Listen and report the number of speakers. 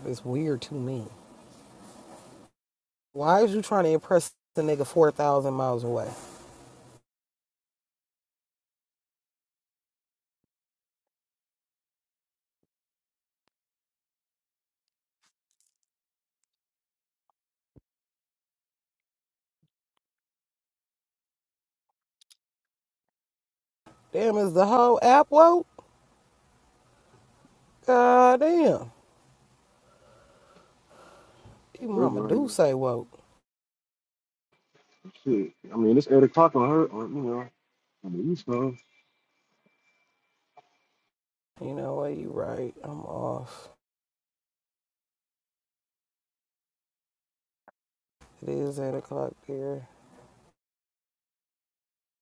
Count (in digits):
2